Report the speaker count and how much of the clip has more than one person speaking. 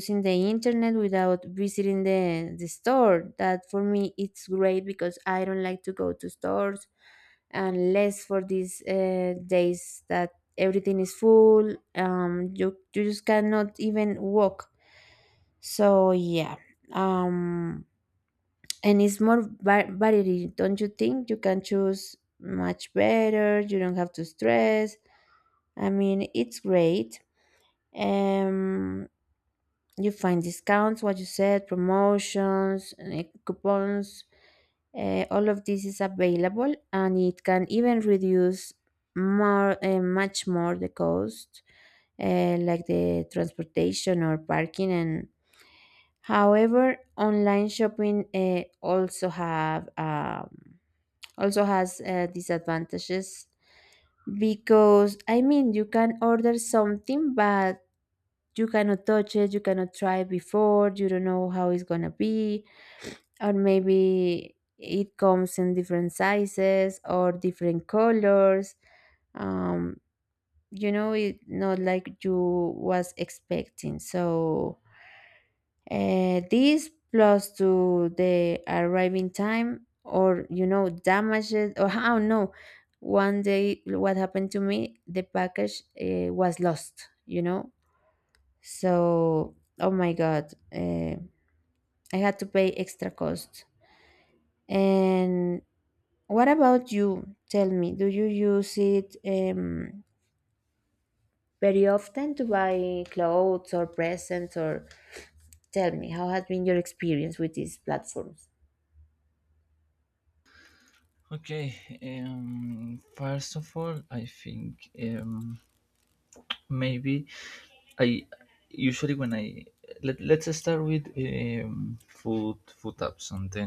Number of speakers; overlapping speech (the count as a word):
two, no overlap